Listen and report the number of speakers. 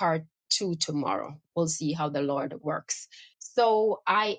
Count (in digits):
1